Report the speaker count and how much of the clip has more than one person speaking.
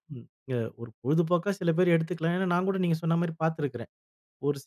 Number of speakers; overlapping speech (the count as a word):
one, no overlap